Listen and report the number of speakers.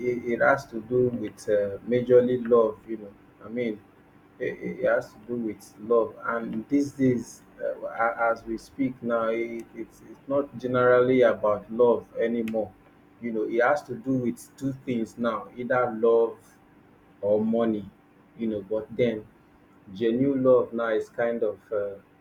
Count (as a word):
one